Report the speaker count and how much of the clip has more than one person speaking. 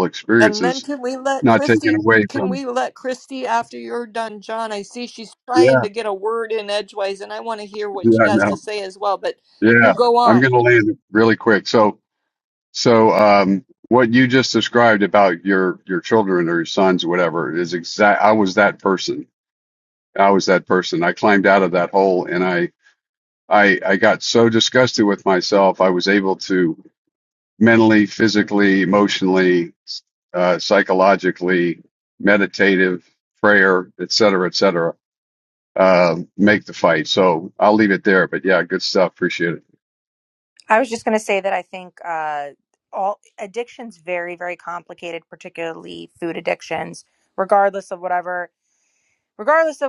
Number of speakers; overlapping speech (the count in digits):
3, about 5%